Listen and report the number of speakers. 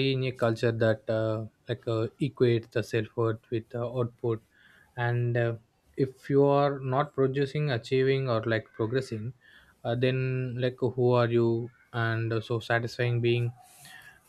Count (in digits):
1